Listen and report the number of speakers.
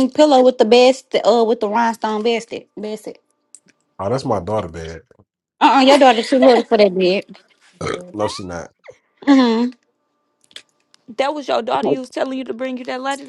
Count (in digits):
3